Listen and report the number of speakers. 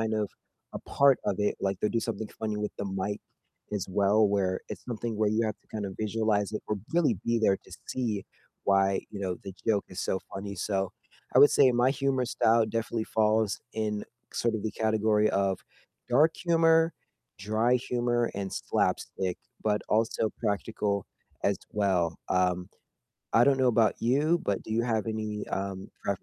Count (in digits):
1